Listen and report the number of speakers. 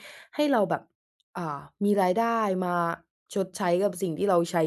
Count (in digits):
1